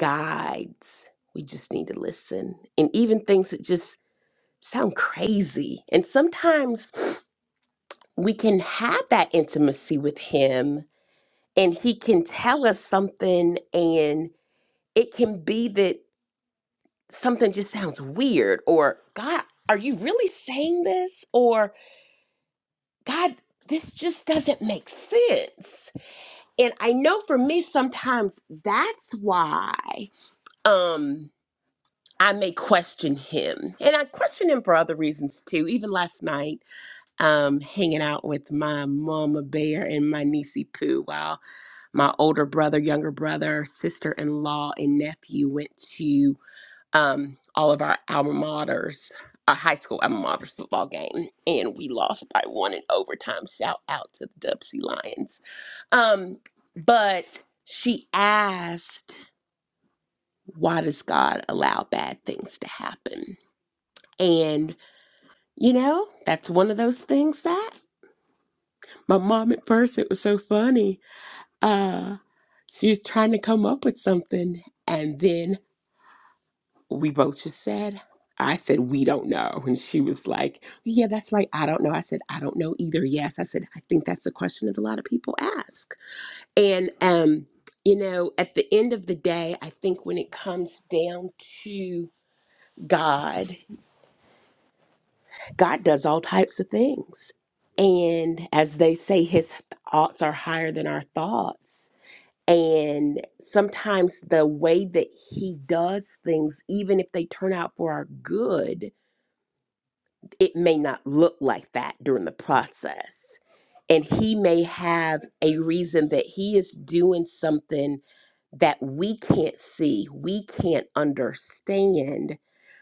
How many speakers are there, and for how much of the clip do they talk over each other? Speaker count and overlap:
one, no overlap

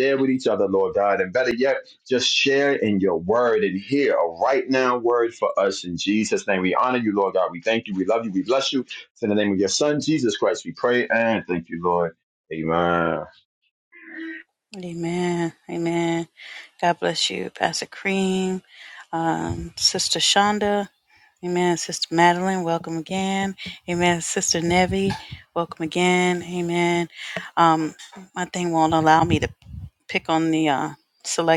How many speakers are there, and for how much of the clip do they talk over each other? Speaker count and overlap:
two, no overlap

